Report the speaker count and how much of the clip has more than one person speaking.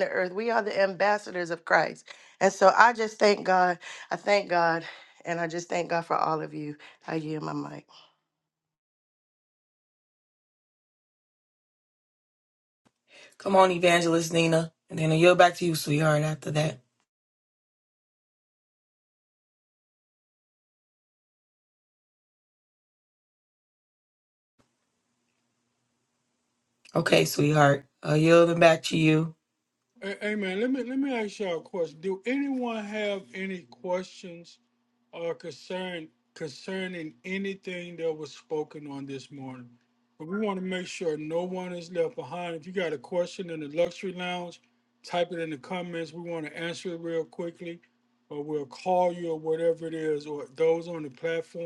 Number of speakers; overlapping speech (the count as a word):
three, no overlap